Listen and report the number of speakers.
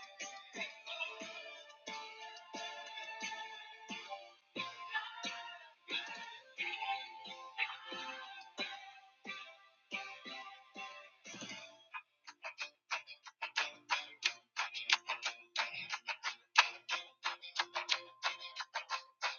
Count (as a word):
zero